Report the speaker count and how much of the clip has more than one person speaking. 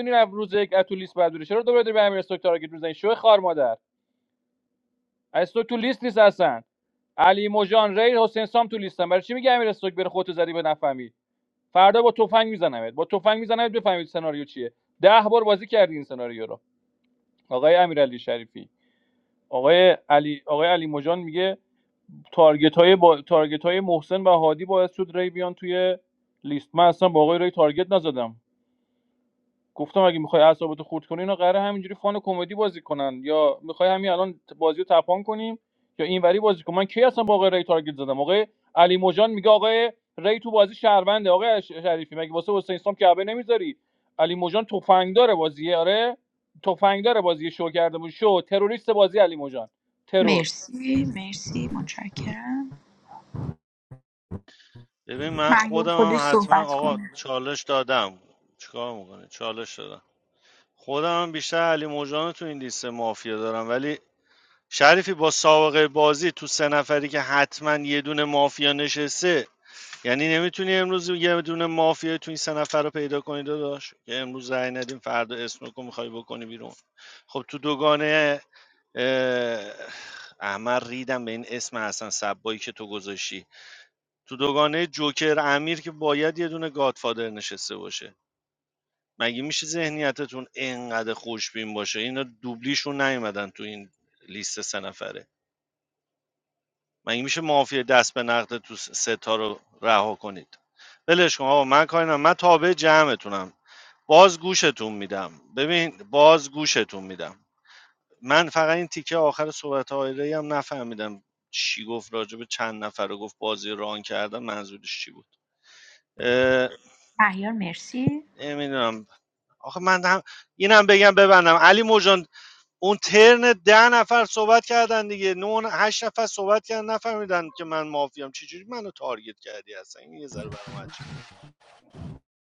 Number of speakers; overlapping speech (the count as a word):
three, about 1%